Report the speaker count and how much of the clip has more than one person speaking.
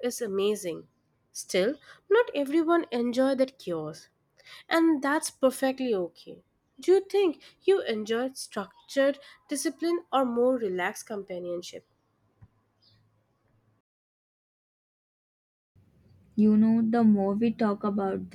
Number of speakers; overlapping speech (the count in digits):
2, no overlap